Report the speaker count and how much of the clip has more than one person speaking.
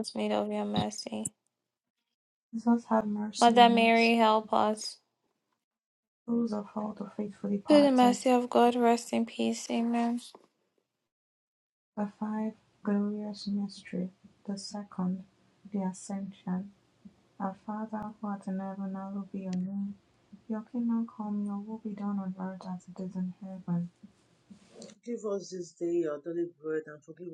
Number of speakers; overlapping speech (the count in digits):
3, about 4%